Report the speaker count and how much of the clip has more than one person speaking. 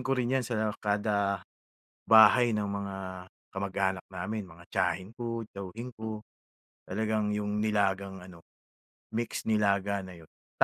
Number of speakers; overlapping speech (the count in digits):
1, no overlap